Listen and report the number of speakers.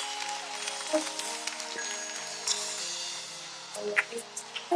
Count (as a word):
zero